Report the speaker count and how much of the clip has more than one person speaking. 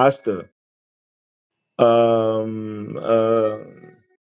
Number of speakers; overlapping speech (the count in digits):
1, no overlap